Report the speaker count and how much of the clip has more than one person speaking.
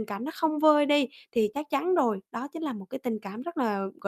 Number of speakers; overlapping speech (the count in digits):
1, no overlap